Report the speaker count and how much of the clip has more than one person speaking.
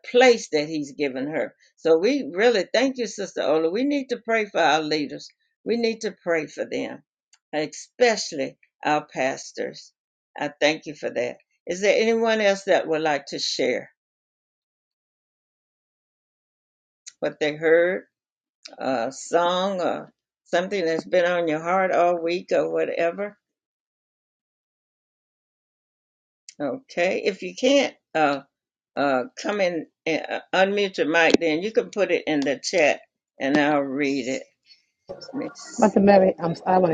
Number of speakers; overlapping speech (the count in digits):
2, no overlap